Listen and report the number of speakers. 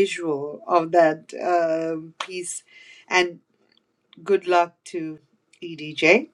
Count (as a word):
one